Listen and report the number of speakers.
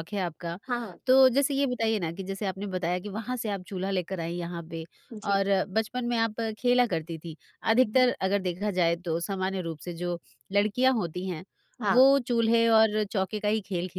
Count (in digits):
2